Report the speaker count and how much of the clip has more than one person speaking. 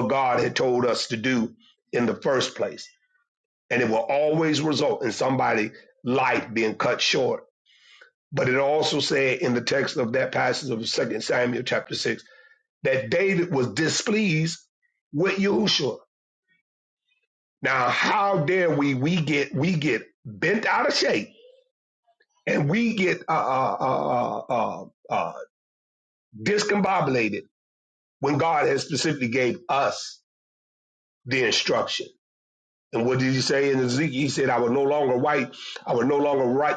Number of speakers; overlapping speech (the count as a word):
one, no overlap